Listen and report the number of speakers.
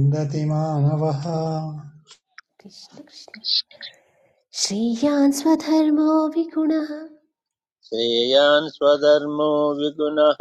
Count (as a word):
three